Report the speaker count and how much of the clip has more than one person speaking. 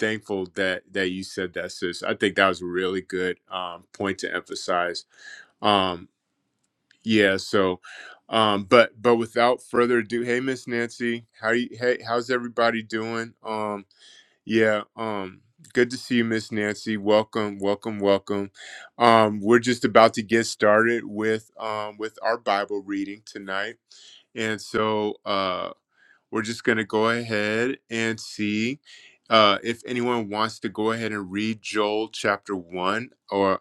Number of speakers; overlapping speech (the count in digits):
1, no overlap